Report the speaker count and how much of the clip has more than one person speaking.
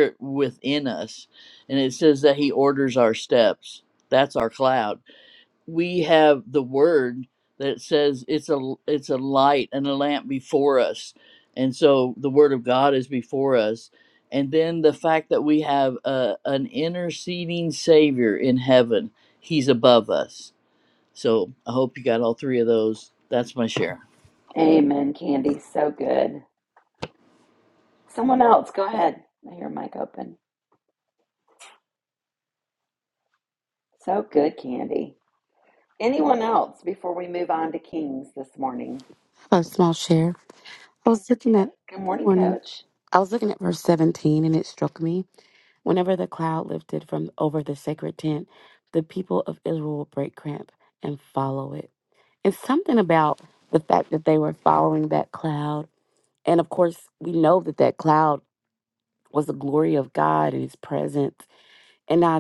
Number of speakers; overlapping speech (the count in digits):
3, about 1%